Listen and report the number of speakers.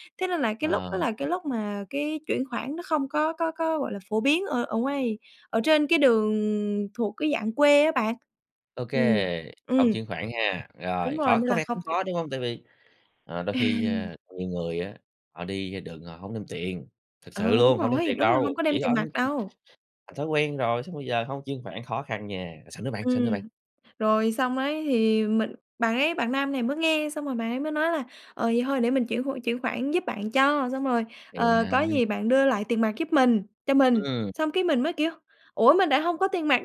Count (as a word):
two